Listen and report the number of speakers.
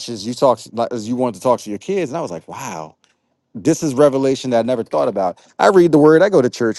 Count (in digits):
1